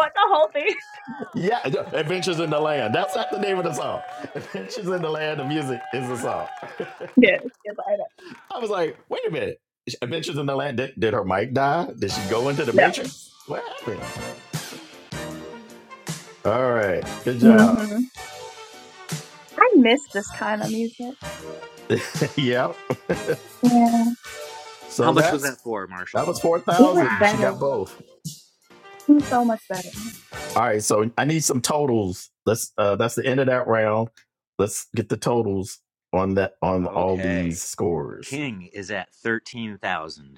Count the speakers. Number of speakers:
three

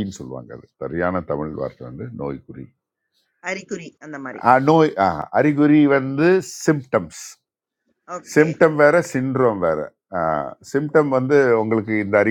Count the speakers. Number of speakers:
two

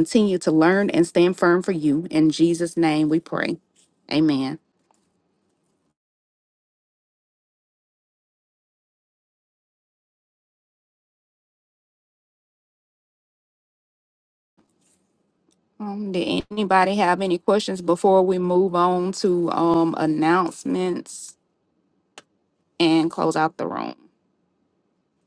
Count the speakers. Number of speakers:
one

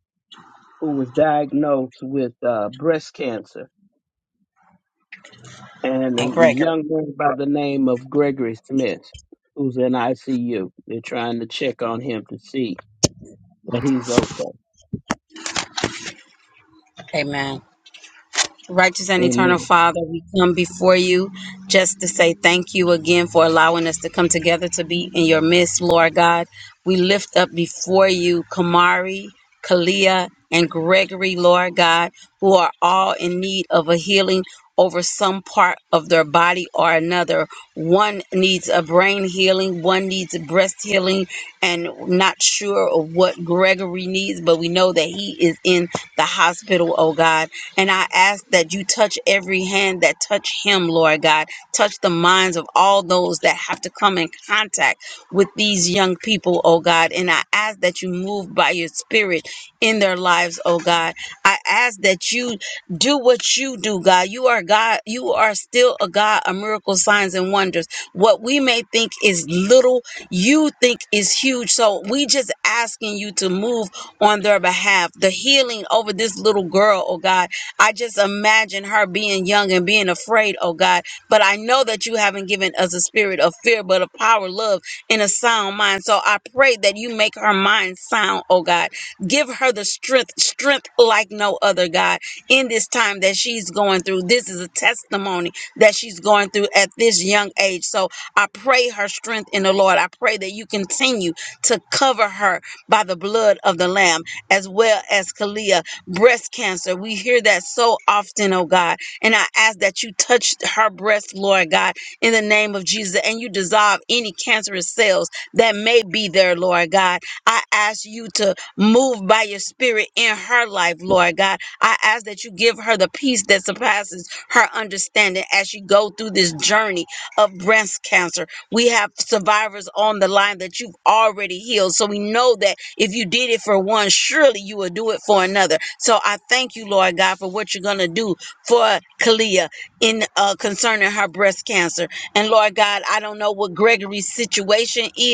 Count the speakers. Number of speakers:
two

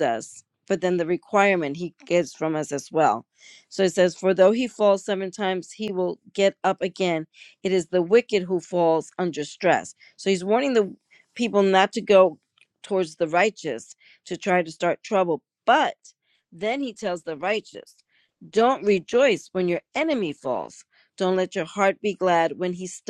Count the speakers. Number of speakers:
one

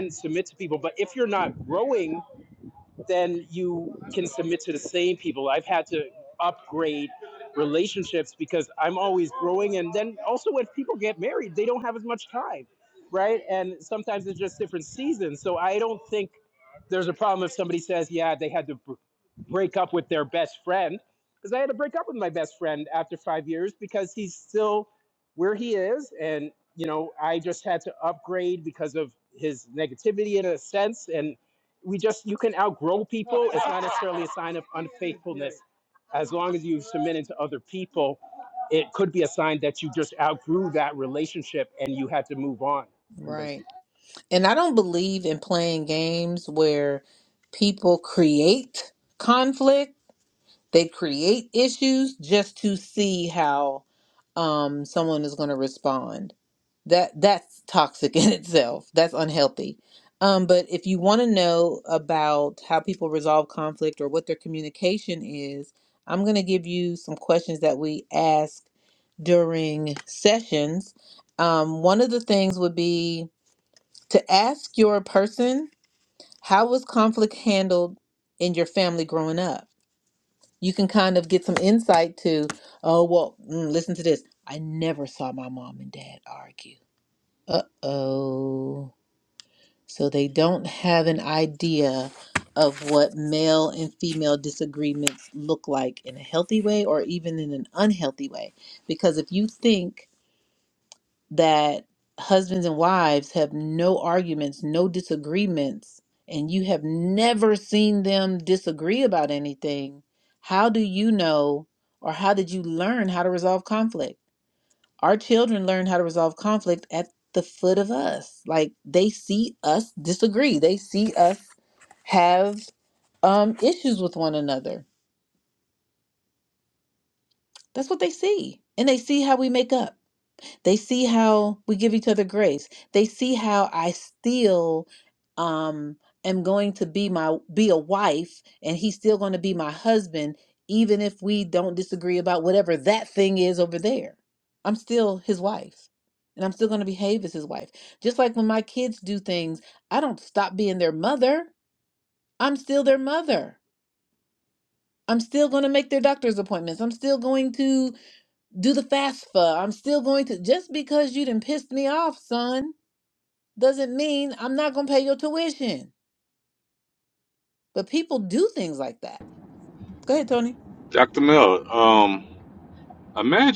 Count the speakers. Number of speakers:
three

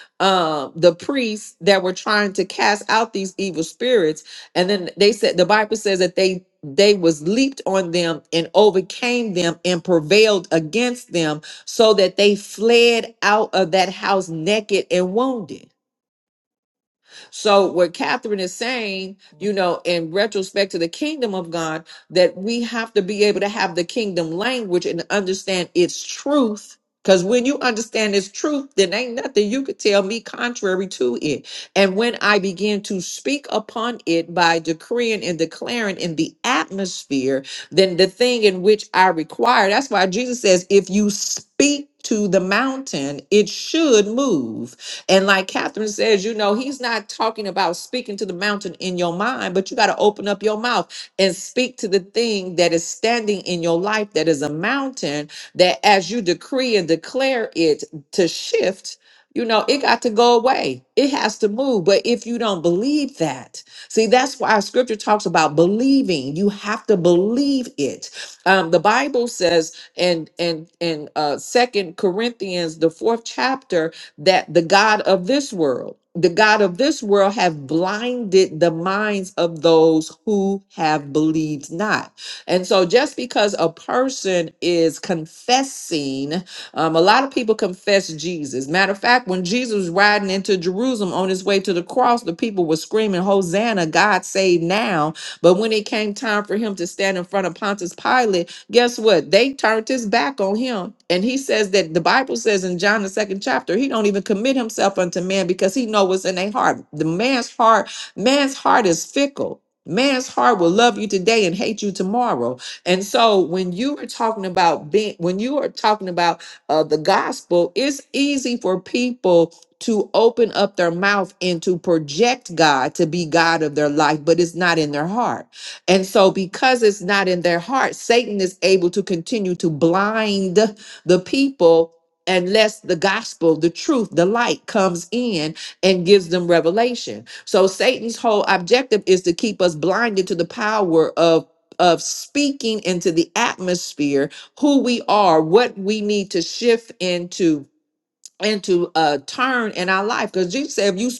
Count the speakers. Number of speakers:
one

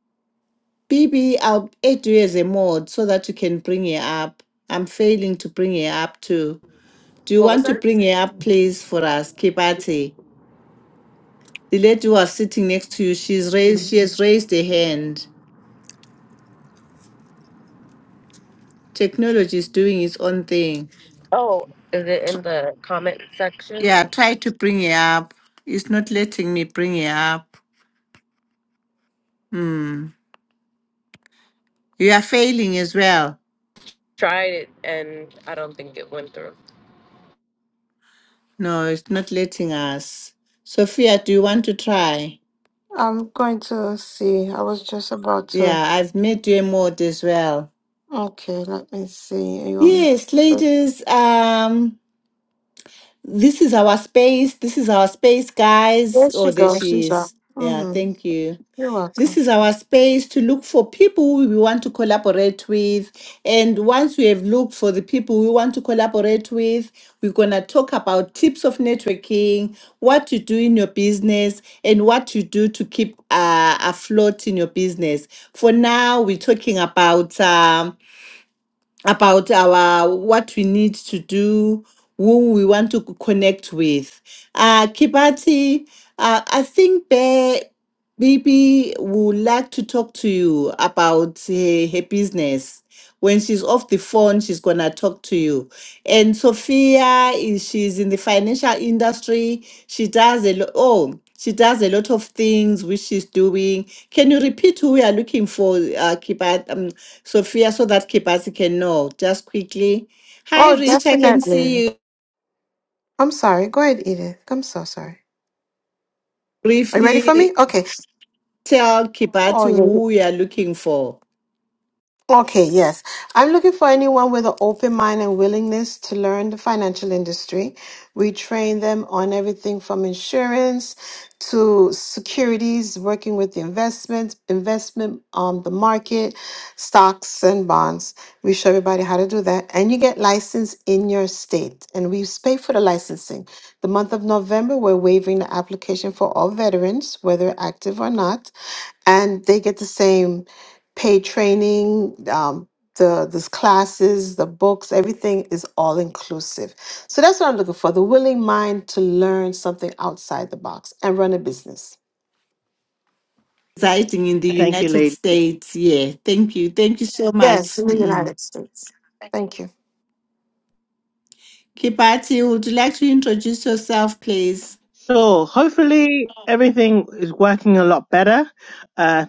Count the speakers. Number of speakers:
four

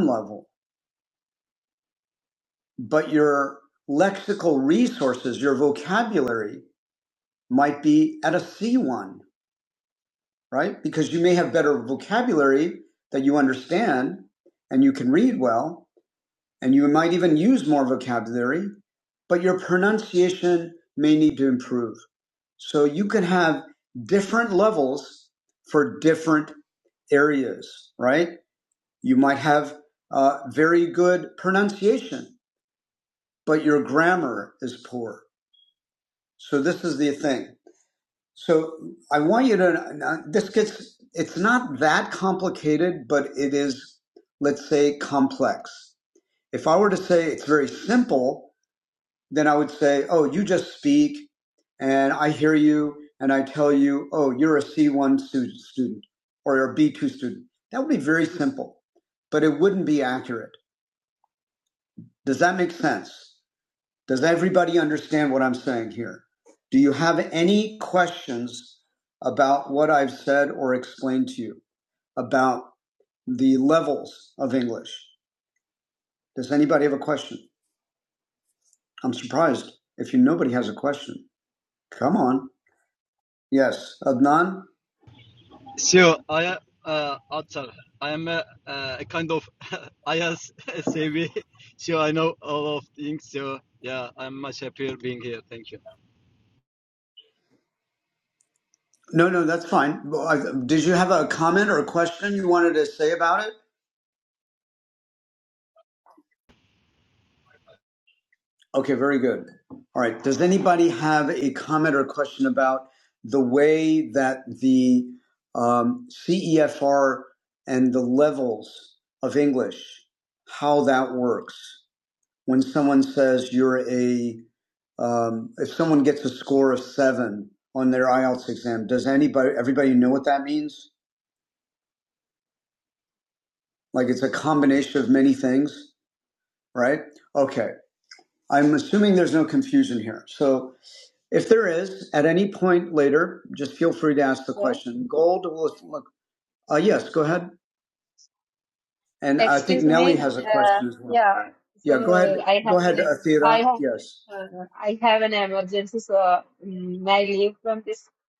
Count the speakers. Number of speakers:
three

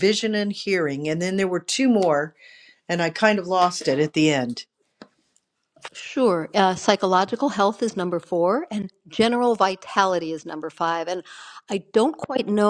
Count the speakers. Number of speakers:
two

